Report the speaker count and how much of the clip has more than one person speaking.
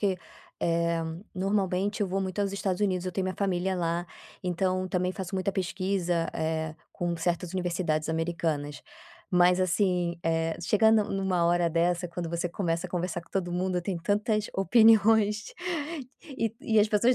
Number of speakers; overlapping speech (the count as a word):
one, no overlap